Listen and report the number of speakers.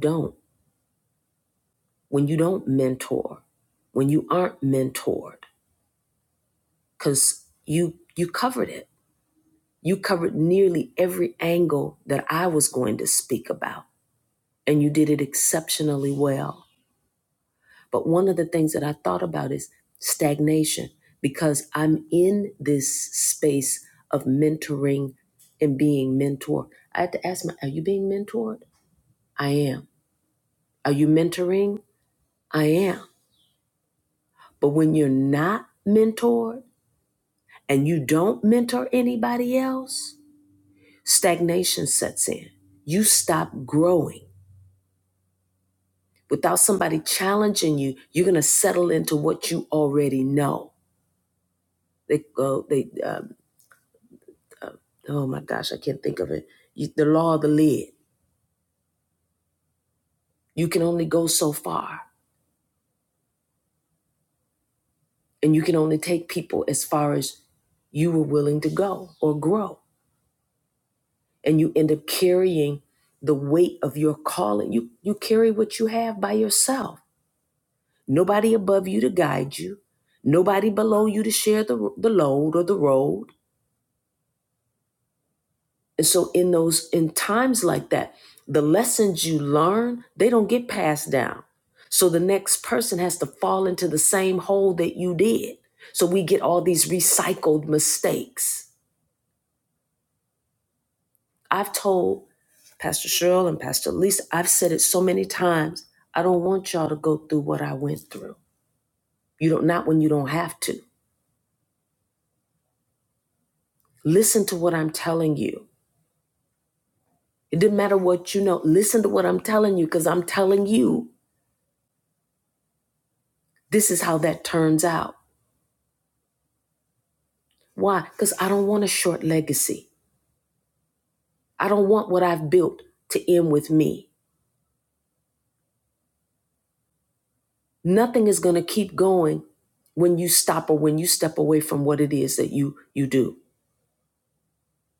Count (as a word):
one